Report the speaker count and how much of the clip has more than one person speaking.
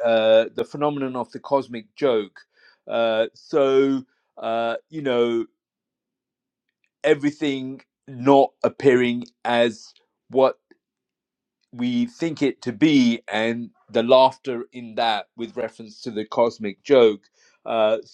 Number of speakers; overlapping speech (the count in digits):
1, no overlap